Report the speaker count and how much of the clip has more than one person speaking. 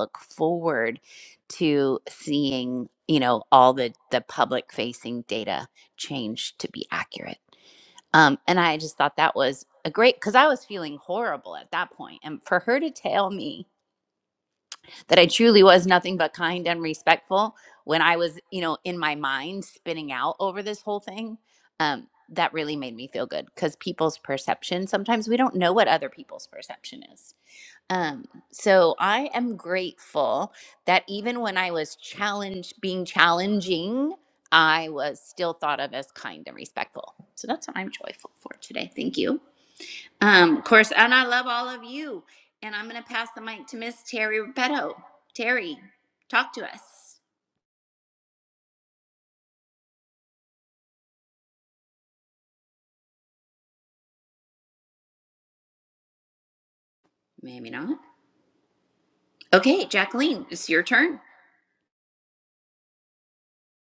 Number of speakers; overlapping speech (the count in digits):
1, no overlap